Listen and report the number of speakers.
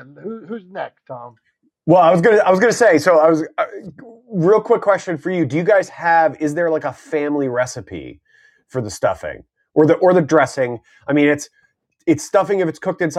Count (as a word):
two